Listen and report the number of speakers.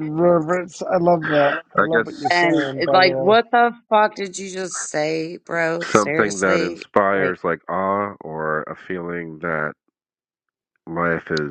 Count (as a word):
three